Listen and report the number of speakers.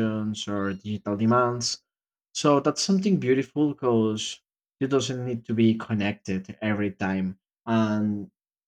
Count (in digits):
1